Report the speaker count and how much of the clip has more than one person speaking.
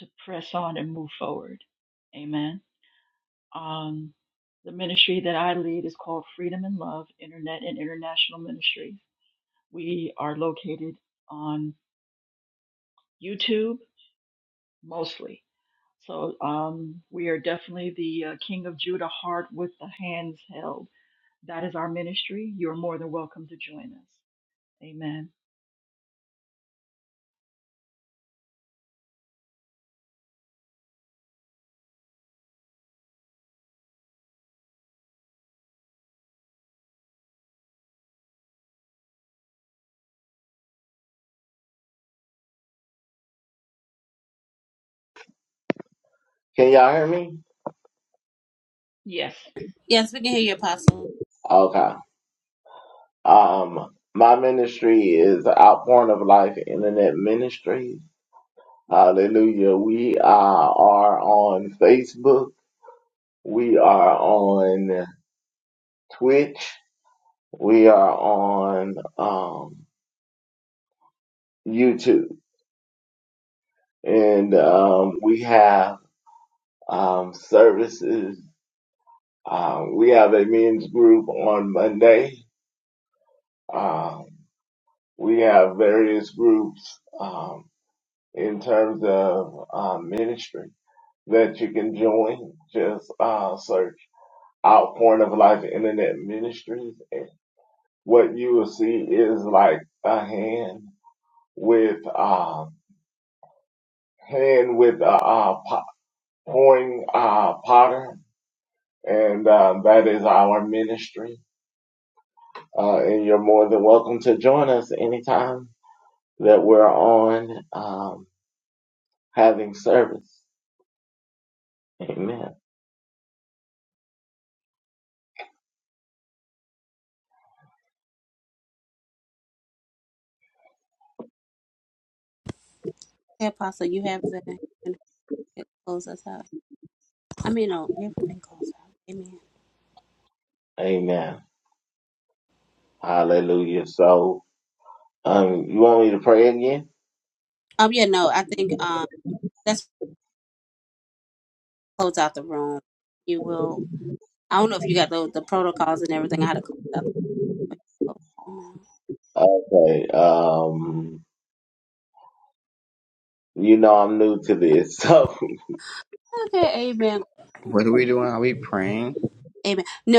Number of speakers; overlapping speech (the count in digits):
4, no overlap